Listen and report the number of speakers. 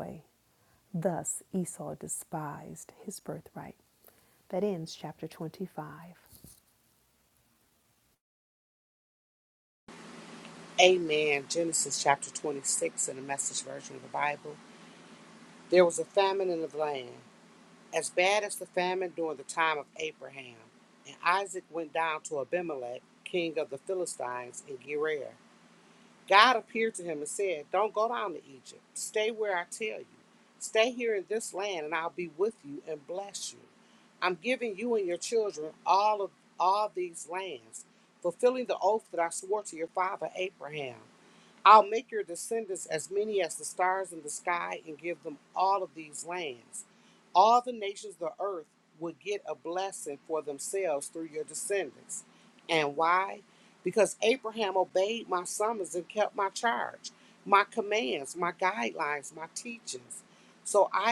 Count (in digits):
2